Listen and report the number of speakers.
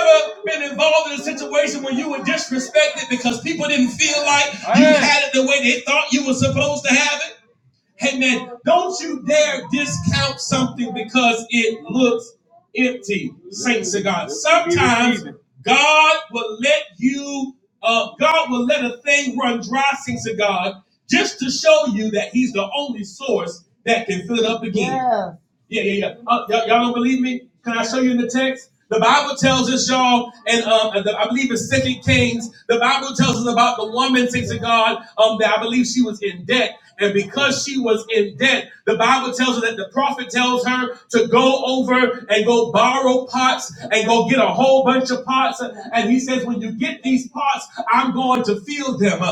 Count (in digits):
1